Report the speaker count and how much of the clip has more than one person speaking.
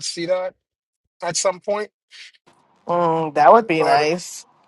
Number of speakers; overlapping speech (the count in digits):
2, about 6%